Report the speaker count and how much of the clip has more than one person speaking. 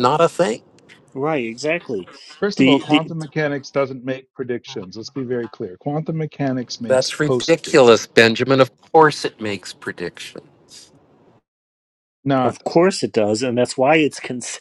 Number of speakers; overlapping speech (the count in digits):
3, about 13%